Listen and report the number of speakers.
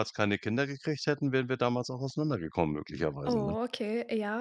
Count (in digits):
2